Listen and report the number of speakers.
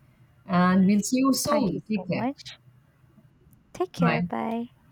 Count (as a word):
two